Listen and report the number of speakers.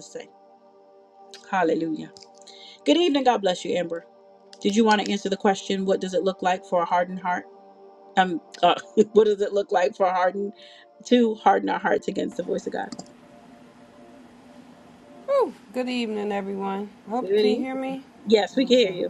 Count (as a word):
two